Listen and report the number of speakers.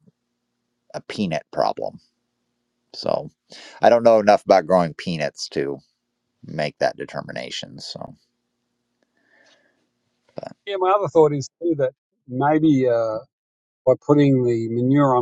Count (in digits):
2